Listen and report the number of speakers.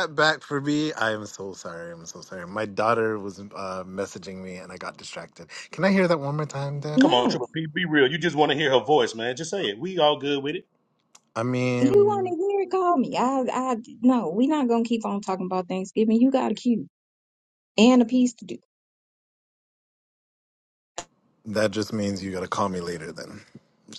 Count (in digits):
3